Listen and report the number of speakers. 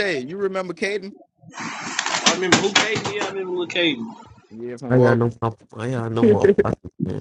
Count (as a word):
three